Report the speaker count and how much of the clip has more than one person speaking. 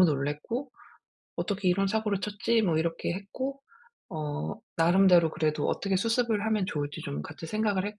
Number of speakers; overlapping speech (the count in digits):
1, no overlap